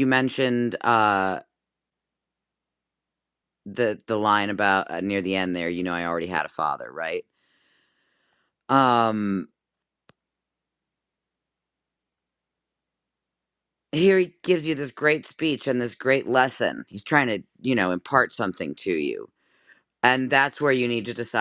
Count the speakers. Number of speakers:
1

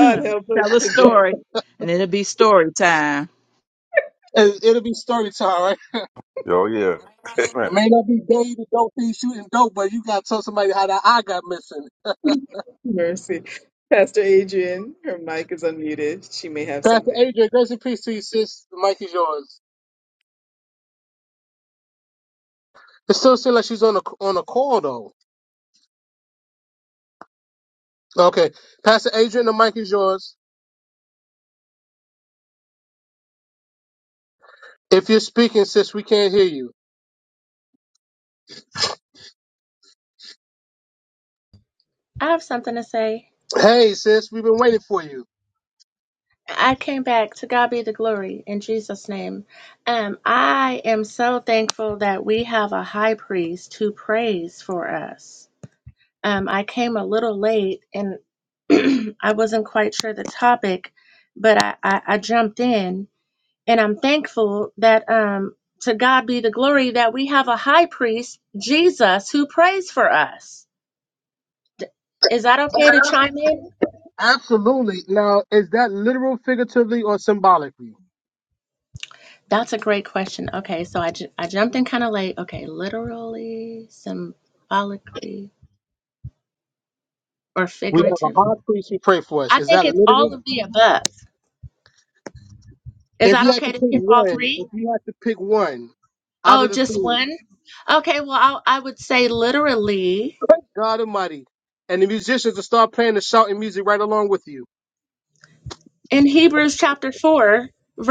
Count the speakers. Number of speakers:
5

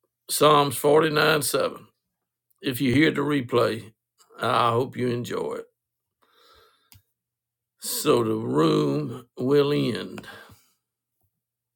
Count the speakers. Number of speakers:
1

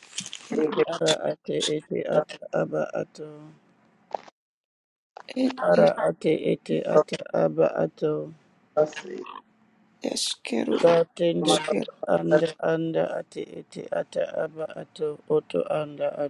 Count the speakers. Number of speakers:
3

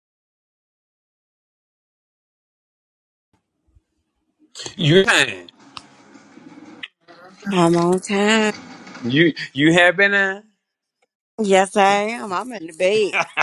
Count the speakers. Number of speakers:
2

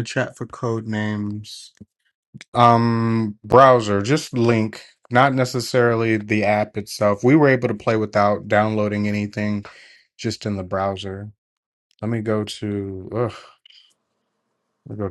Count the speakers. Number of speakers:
1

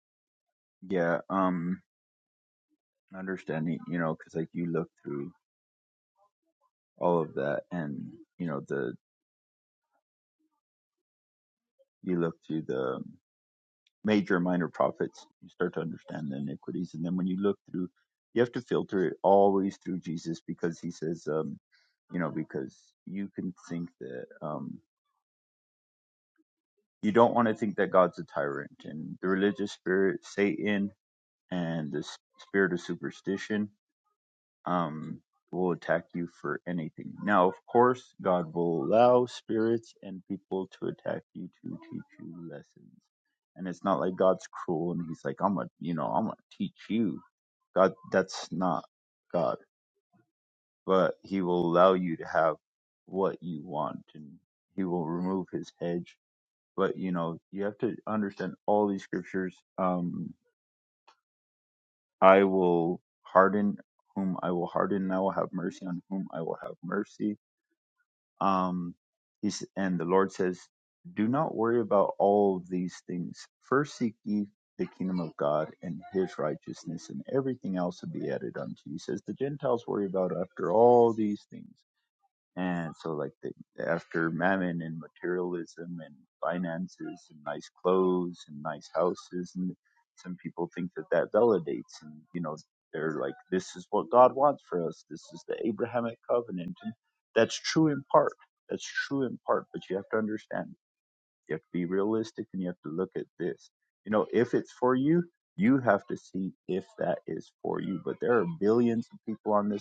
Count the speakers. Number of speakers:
1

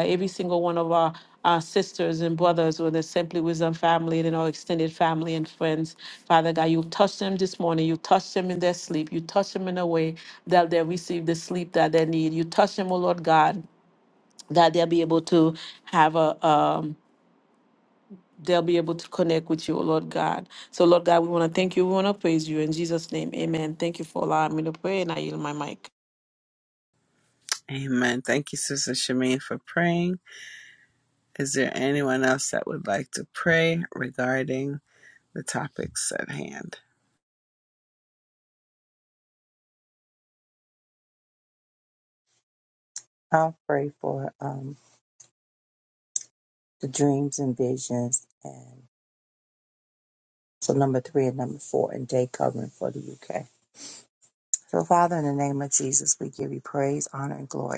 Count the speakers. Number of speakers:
3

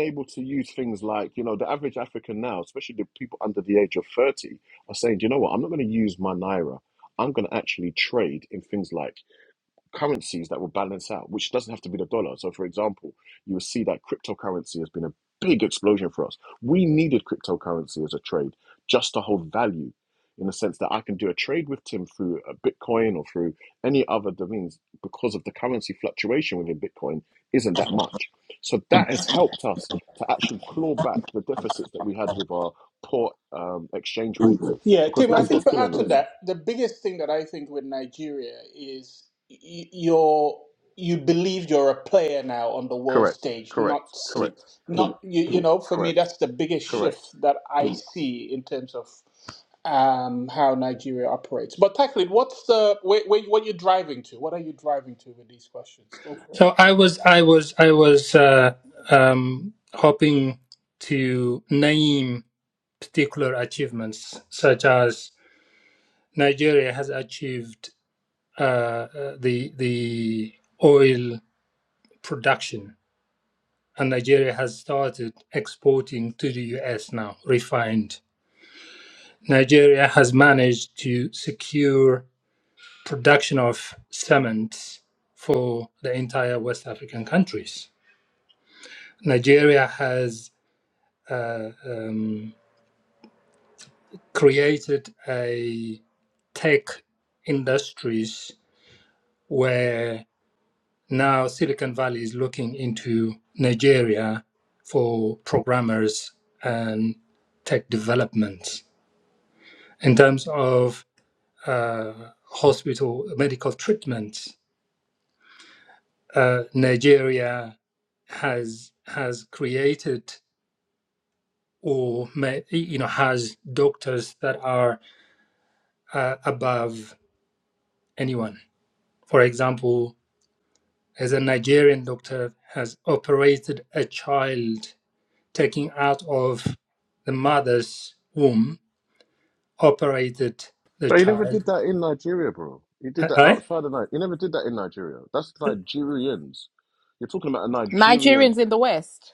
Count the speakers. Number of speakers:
4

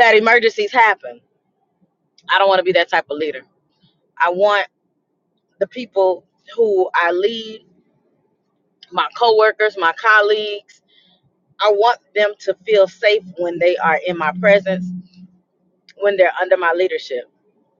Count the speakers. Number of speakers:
1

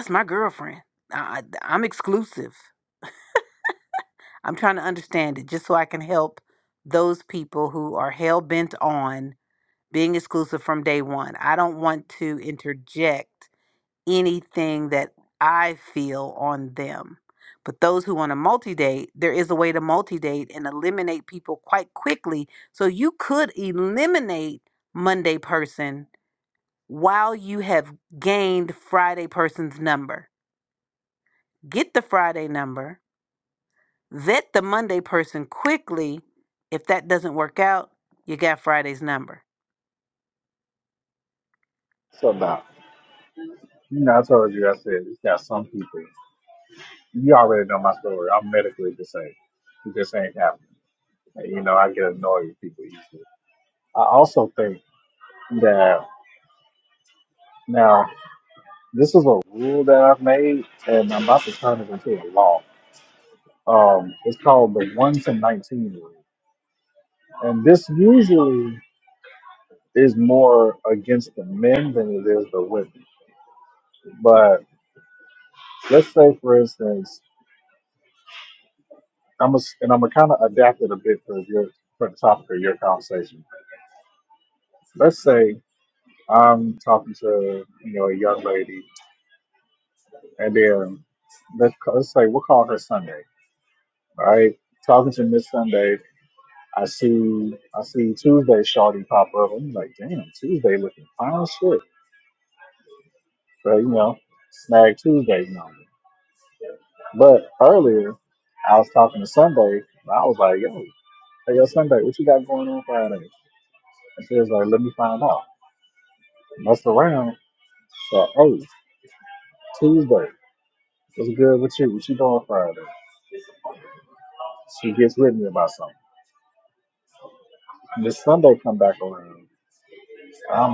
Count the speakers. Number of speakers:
2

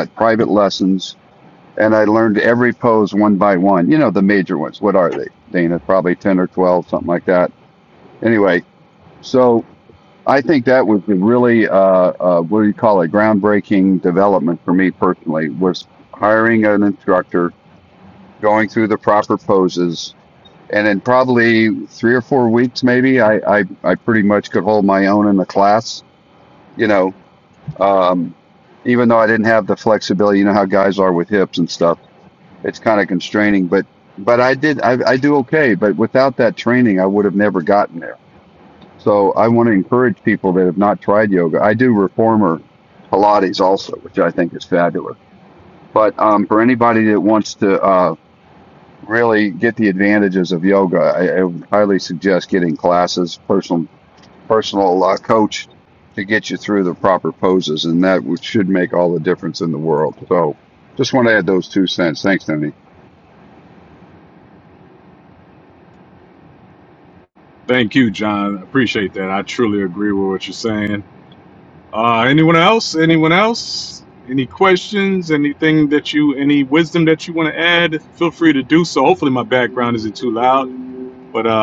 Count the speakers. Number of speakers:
2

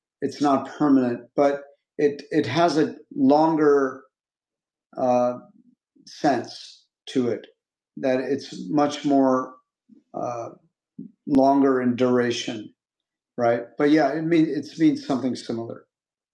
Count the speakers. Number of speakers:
1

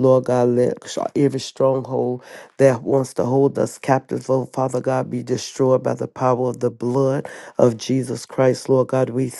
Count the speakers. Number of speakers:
1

